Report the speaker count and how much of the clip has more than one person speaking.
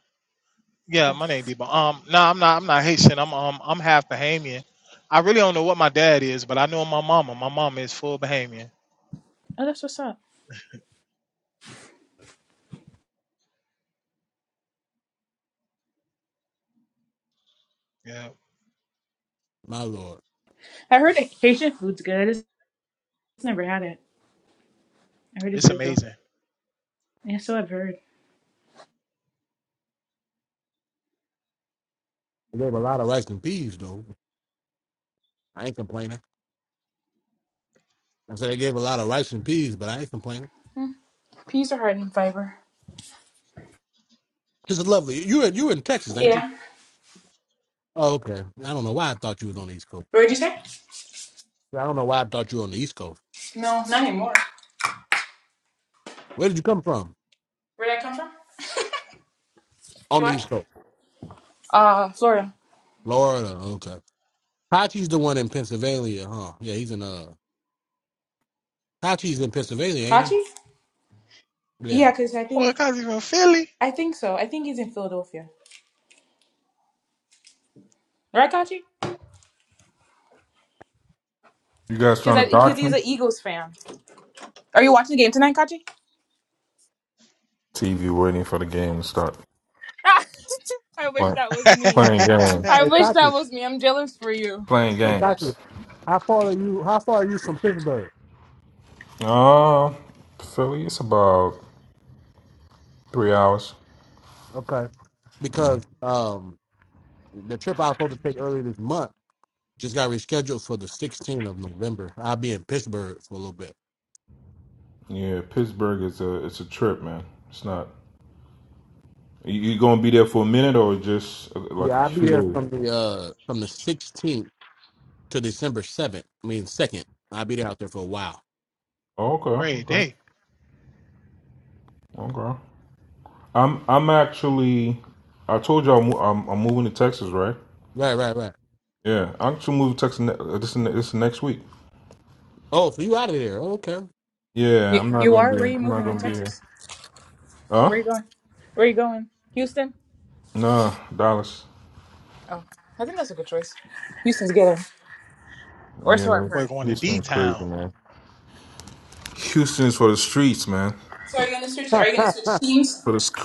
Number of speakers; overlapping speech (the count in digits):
4, about 5%